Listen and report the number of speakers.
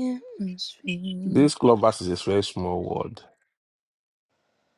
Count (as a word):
two